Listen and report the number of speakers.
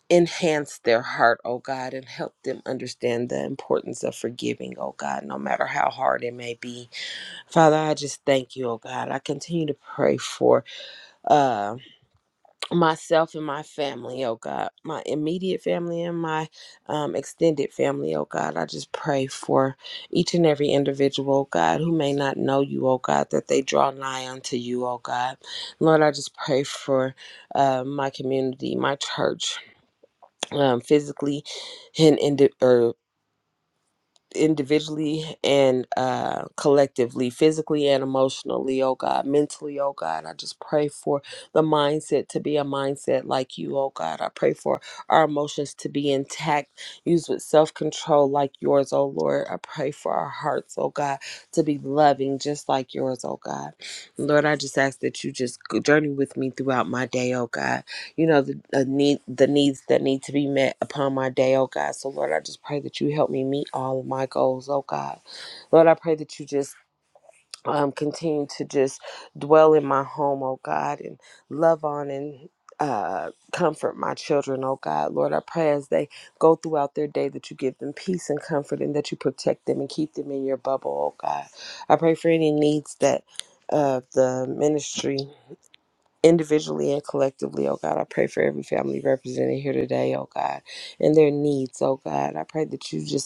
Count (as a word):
one